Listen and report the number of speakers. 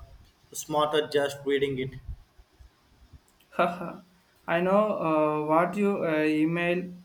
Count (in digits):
2